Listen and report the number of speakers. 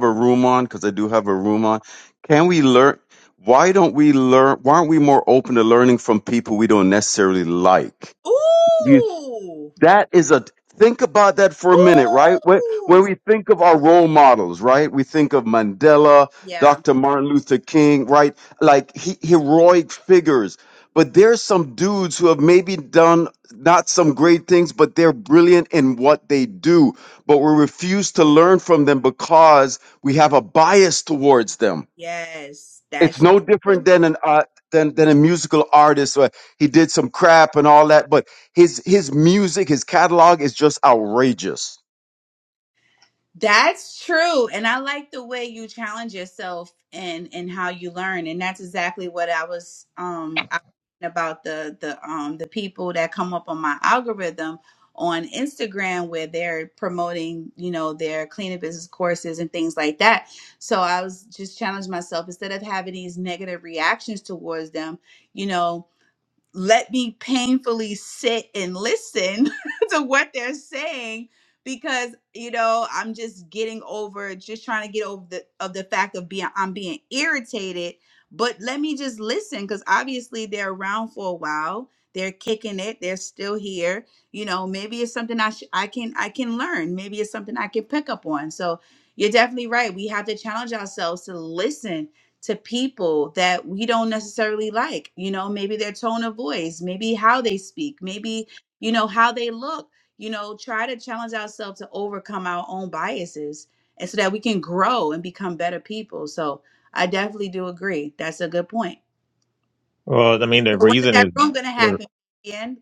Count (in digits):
3